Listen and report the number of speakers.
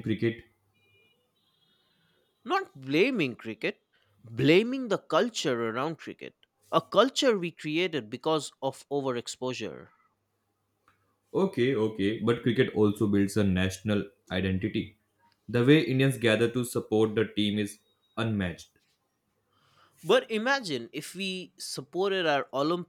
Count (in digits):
2